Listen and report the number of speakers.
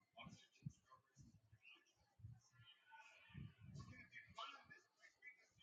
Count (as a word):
zero